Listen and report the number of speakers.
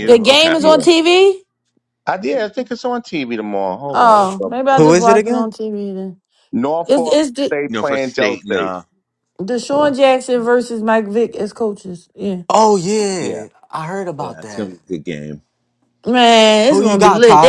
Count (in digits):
4